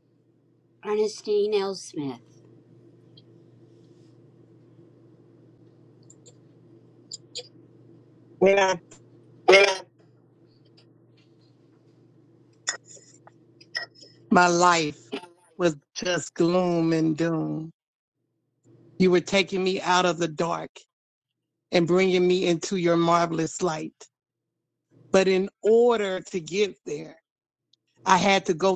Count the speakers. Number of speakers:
2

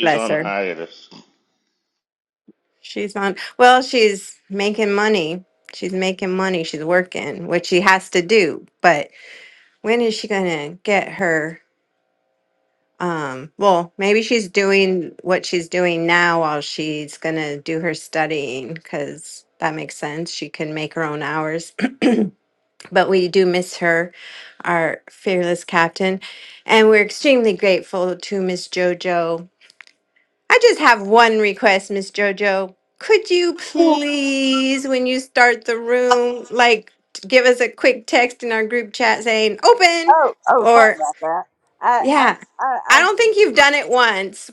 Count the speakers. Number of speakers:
3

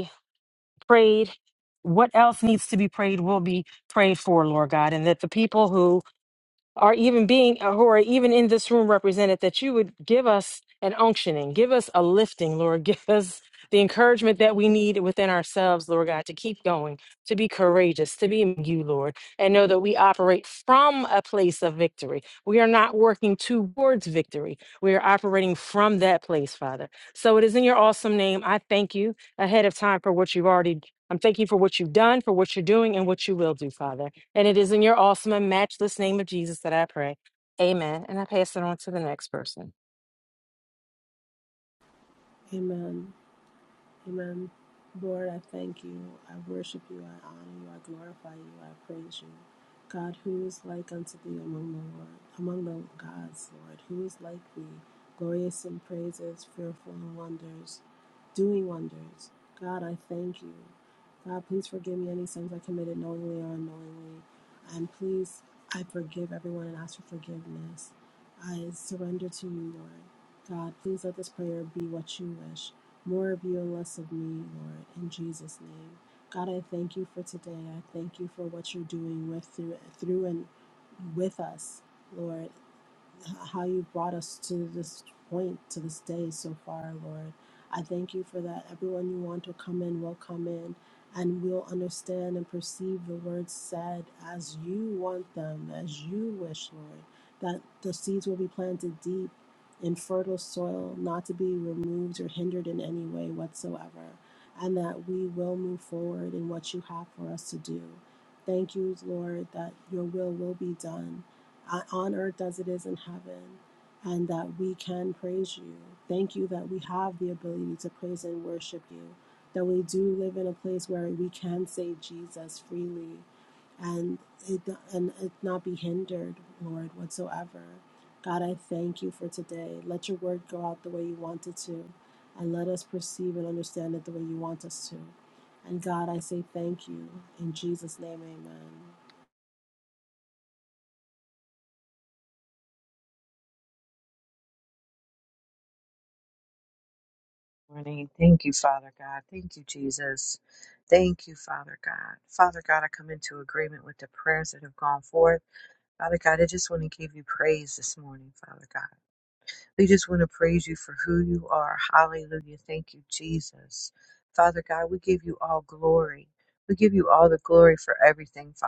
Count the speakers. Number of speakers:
3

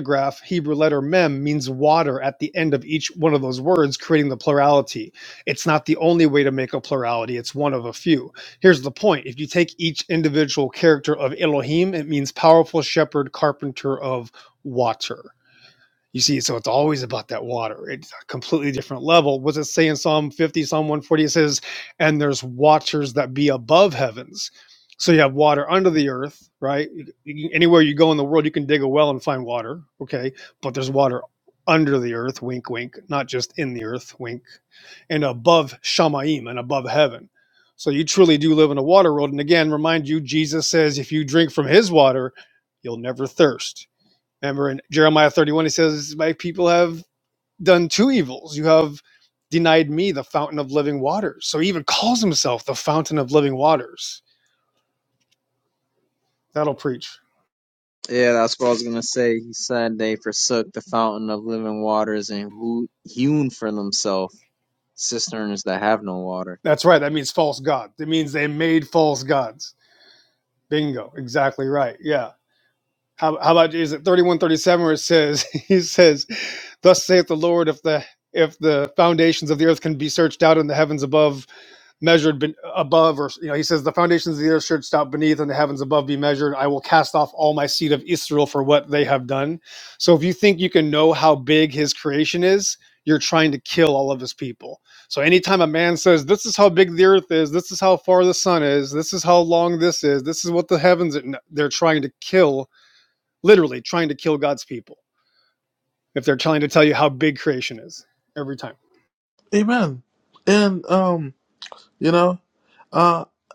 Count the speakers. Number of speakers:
3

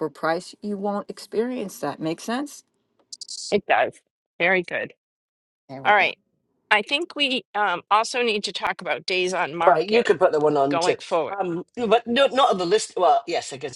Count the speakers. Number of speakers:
3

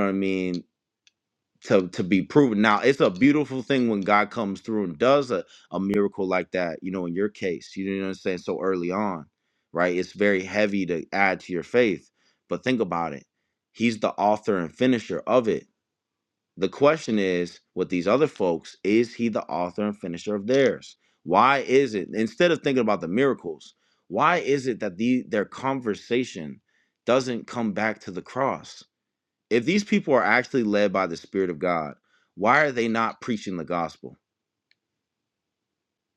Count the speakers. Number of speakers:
1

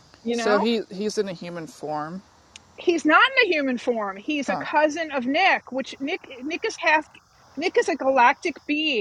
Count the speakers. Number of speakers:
2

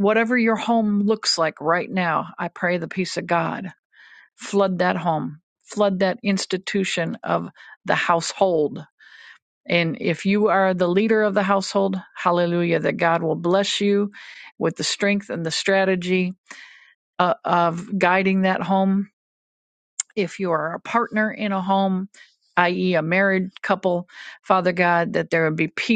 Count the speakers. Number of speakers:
1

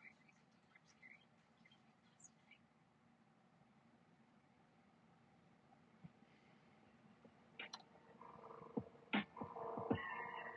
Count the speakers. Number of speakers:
0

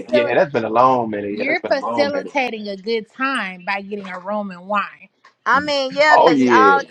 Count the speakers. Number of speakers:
3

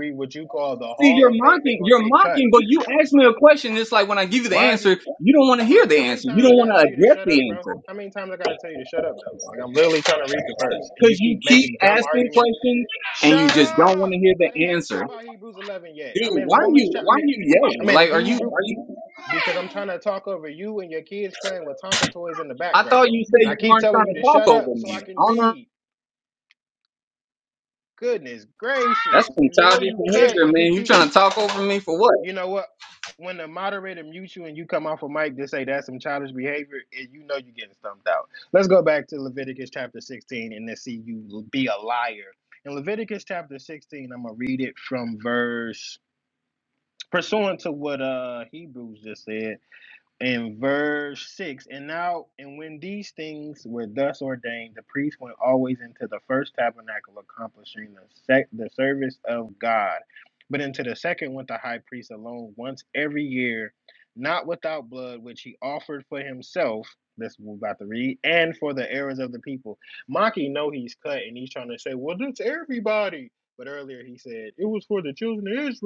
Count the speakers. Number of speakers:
2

